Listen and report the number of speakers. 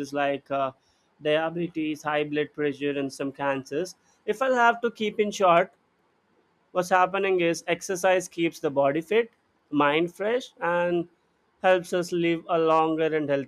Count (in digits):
1